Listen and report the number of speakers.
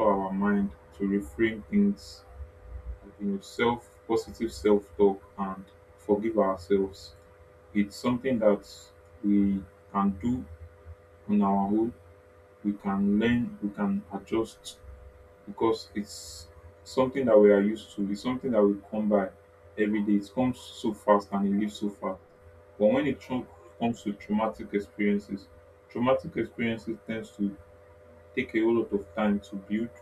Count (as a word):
one